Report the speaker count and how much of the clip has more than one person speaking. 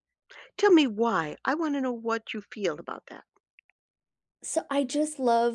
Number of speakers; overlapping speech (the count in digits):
2, no overlap